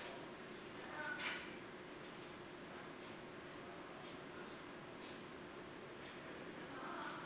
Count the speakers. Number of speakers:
zero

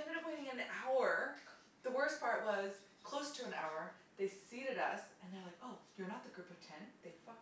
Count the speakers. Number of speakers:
one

